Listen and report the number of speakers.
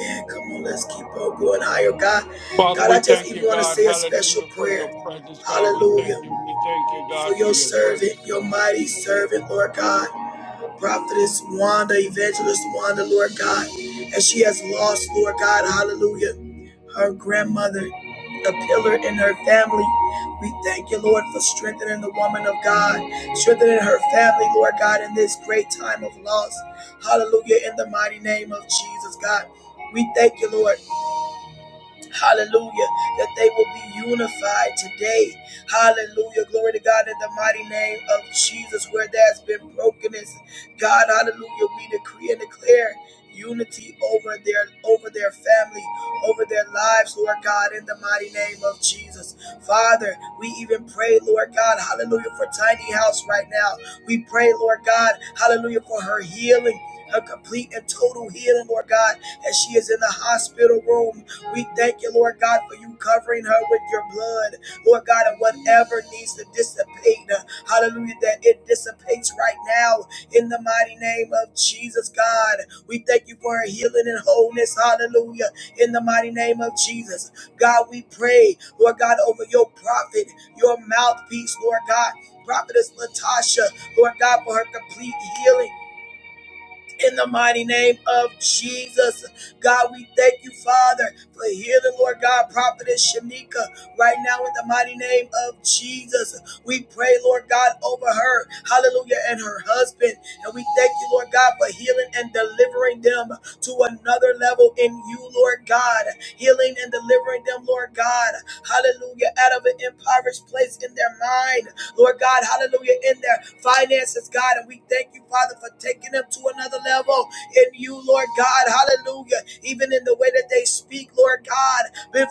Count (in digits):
2